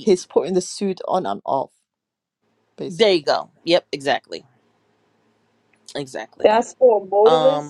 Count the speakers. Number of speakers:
3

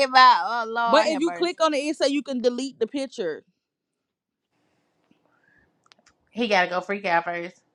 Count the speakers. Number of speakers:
3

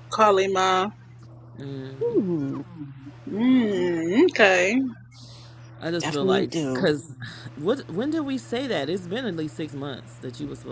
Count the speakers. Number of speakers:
3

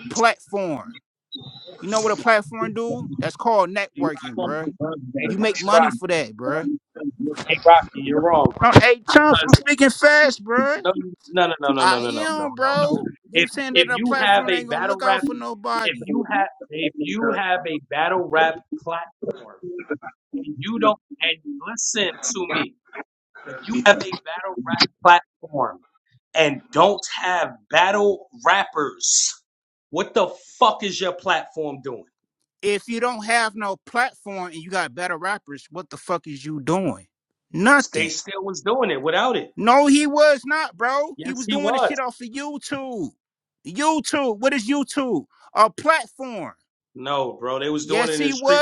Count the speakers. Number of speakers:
2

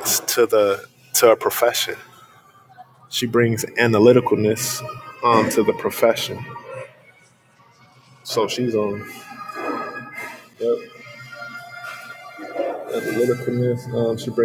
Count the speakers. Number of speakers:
1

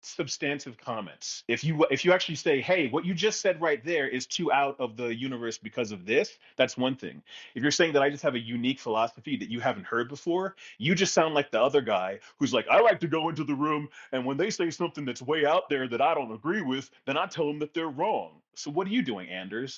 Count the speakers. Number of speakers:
1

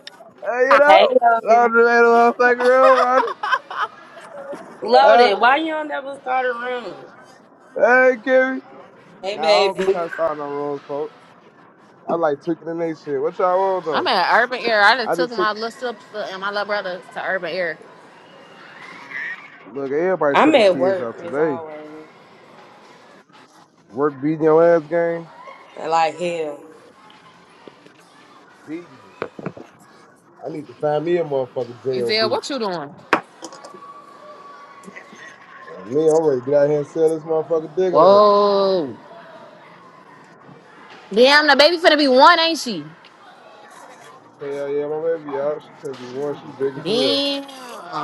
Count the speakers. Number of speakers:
3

